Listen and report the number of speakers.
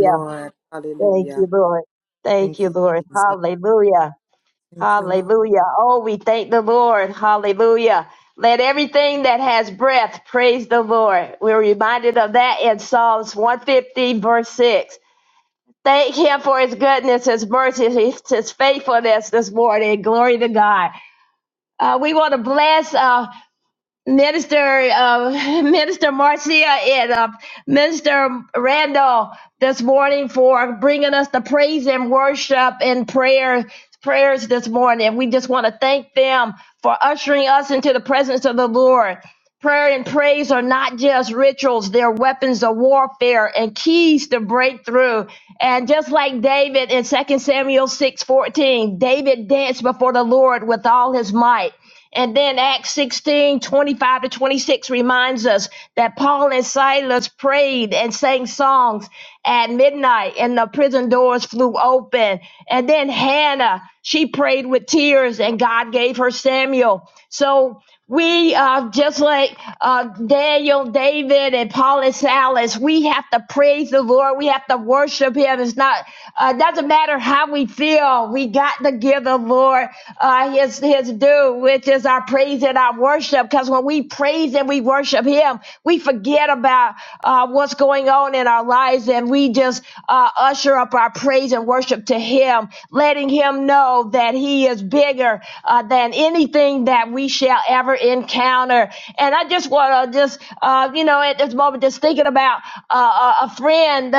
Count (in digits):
2